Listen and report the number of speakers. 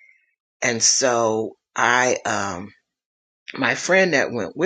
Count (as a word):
one